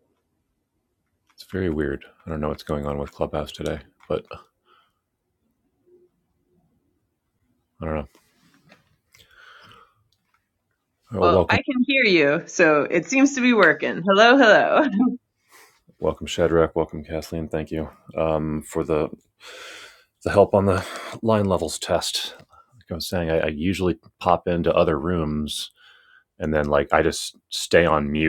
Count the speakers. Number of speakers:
two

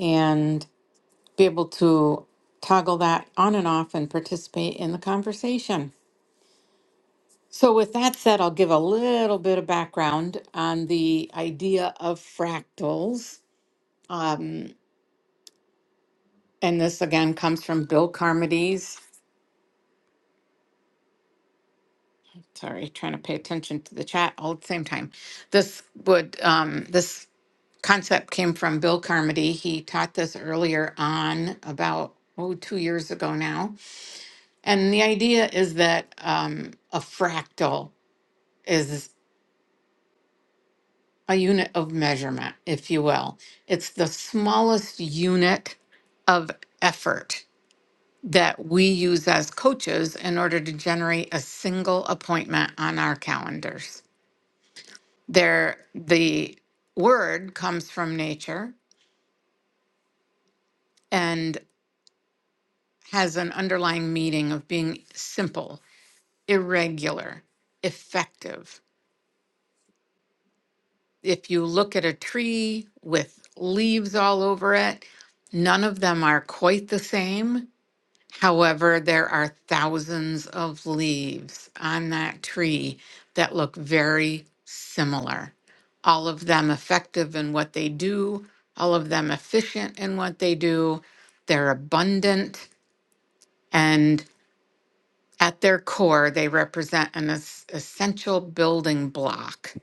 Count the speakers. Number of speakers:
one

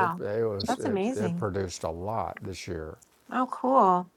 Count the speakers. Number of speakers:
two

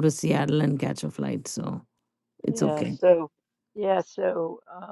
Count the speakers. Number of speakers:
two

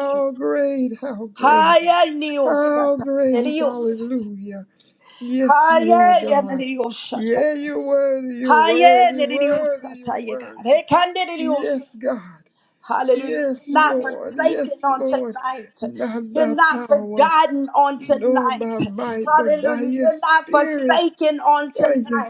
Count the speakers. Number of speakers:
two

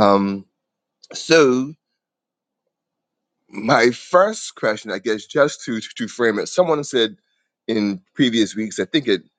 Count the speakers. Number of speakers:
one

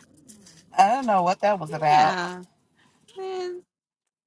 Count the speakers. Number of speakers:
two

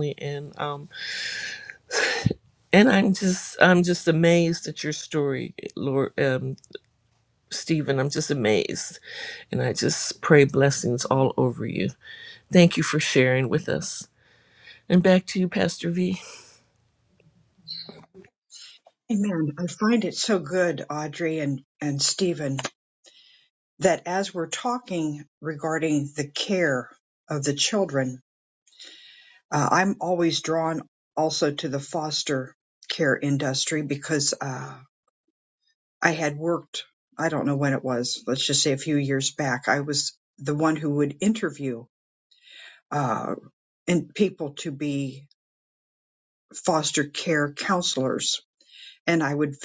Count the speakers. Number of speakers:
two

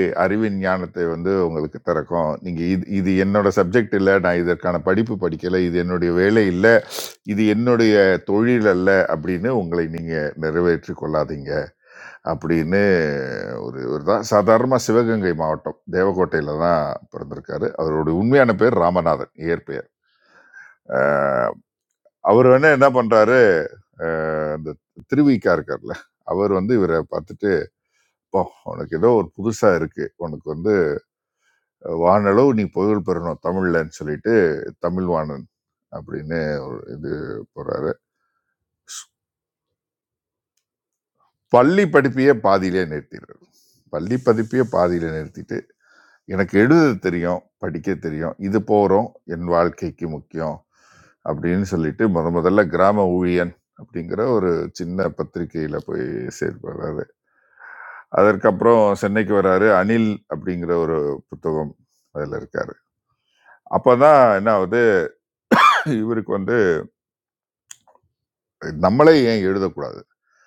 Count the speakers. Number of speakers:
one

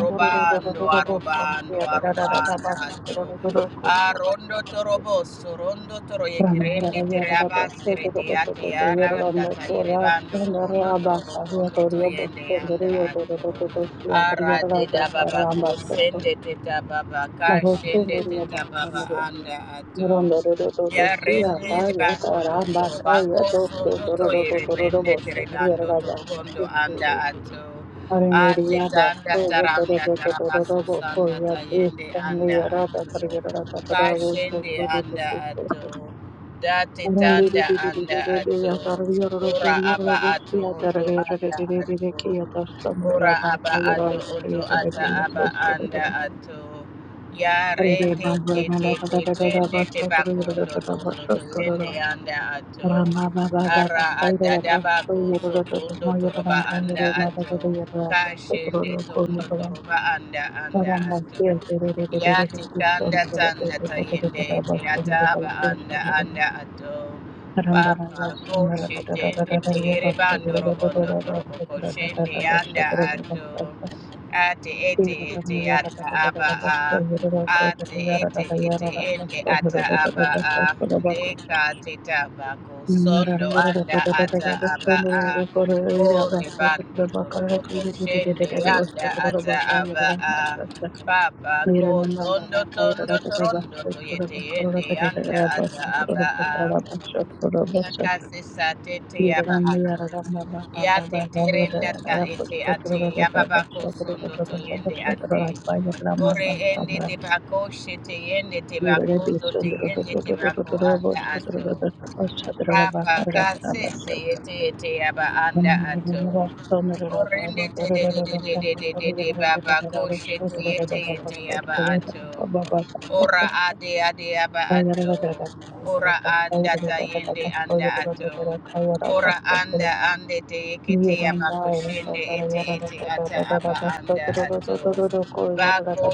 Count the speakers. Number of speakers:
two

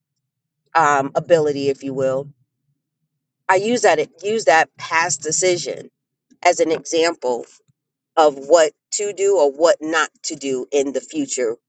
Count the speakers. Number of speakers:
one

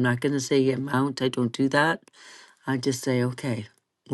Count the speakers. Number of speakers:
one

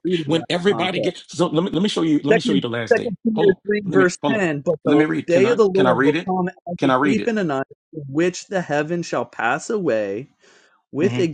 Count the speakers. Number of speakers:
two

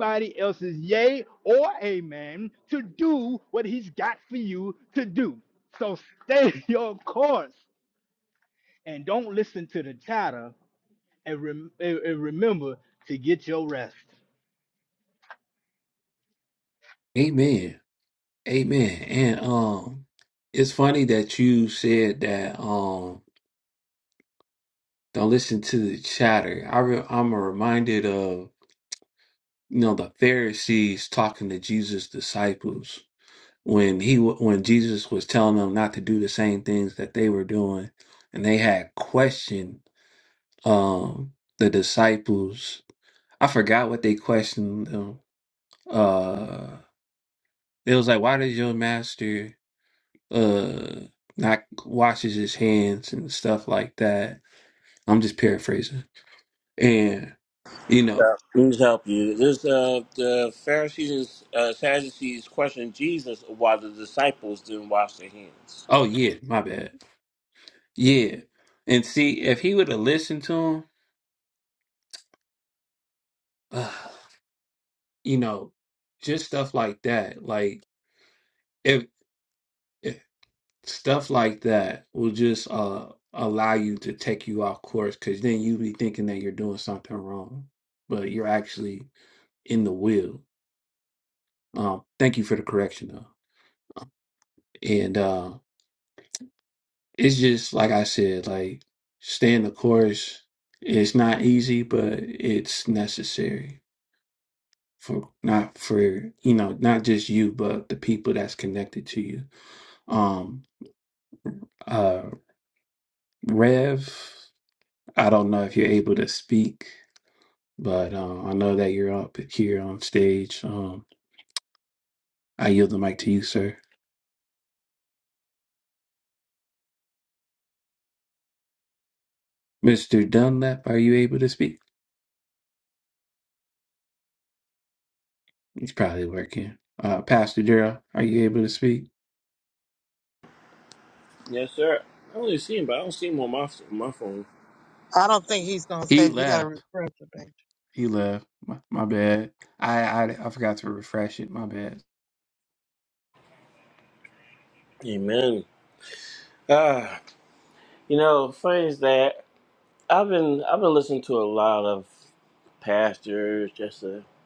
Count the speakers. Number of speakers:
four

